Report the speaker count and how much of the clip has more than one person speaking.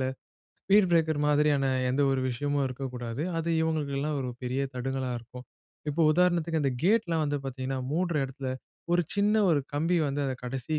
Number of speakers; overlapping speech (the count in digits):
1, no overlap